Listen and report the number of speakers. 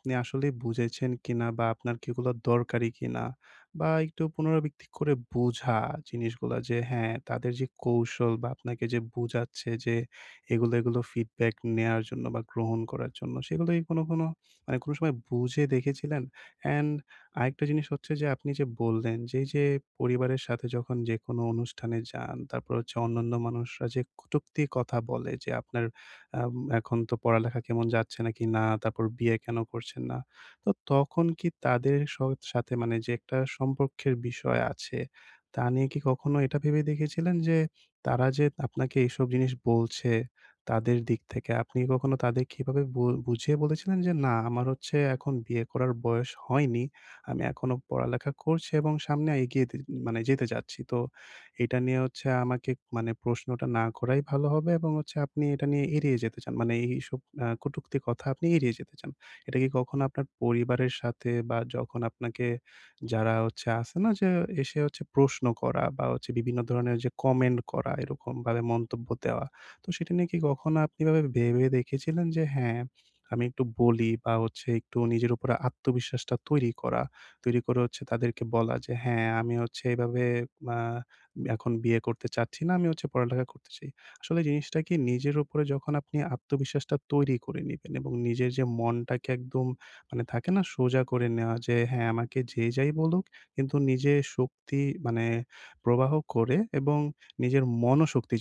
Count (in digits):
1